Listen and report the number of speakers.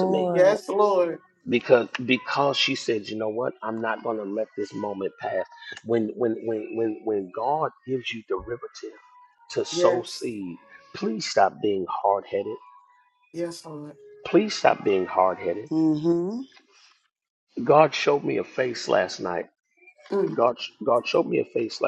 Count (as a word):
three